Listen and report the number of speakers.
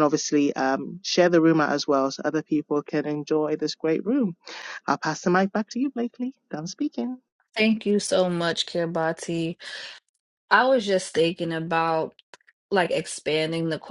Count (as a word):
two